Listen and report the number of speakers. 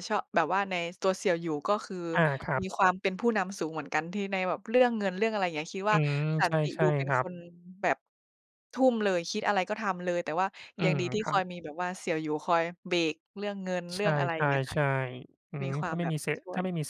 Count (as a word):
two